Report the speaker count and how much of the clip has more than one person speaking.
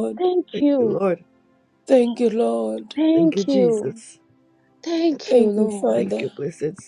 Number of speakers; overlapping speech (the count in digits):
3, about 32%